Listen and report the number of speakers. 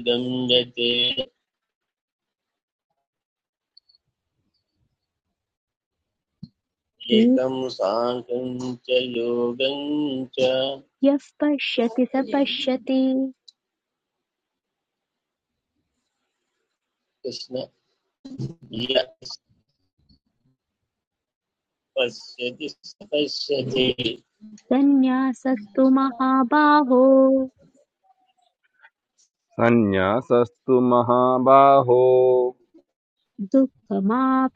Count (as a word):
three